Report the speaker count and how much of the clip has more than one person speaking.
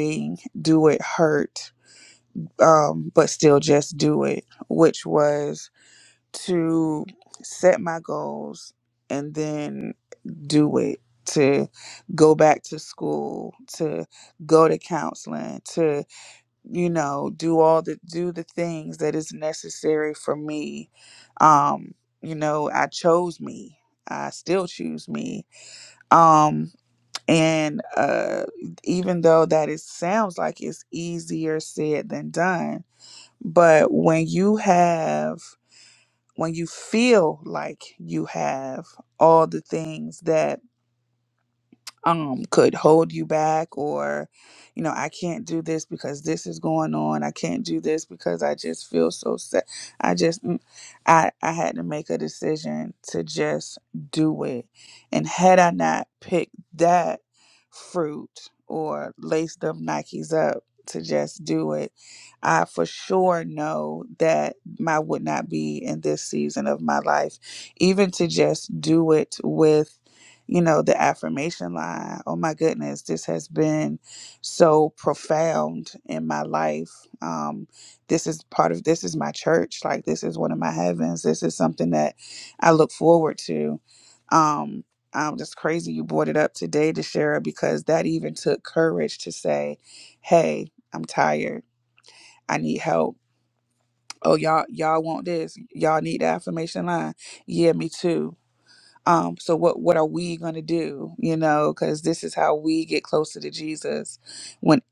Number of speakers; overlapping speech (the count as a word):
one, no overlap